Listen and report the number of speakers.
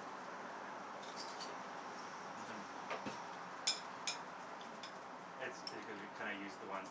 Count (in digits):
2